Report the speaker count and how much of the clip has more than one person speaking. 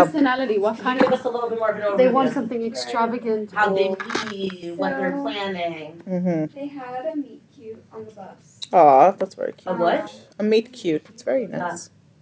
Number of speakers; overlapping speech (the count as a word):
four, about 42%